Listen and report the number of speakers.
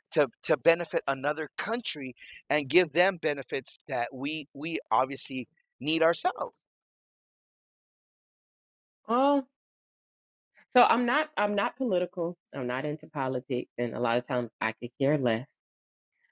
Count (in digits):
2